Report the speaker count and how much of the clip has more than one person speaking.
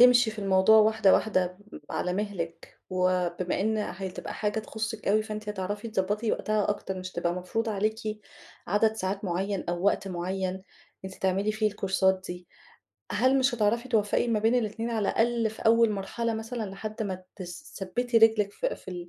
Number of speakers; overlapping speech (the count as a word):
one, no overlap